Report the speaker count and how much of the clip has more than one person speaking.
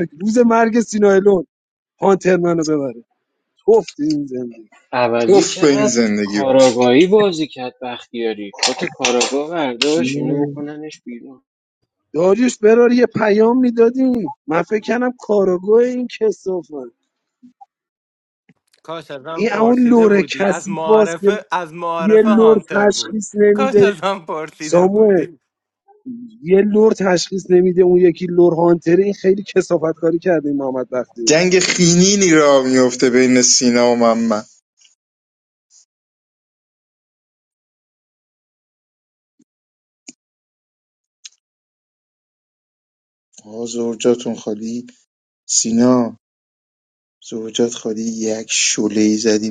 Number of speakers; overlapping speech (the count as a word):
four, about 11%